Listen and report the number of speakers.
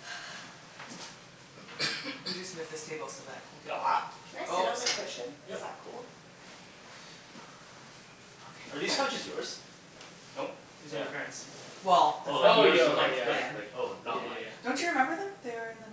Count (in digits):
4